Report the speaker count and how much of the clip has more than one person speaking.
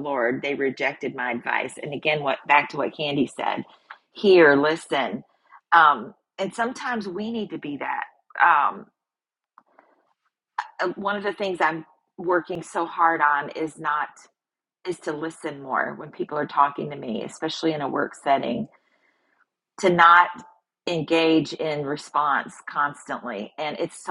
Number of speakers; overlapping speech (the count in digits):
1, no overlap